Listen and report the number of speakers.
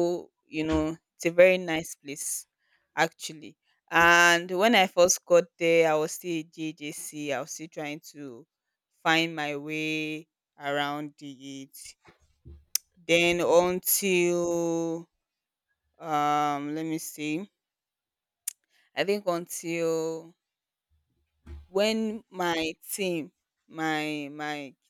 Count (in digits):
1